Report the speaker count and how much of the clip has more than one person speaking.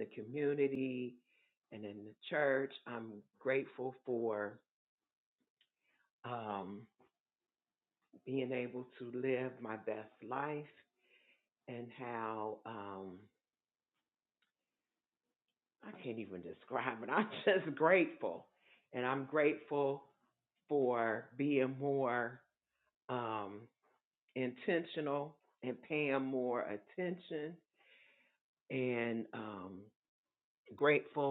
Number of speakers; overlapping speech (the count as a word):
one, no overlap